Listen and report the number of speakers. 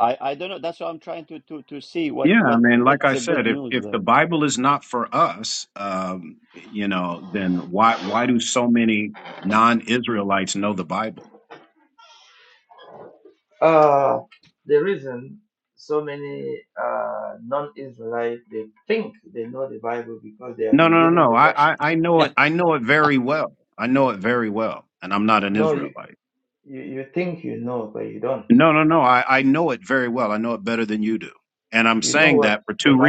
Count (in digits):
3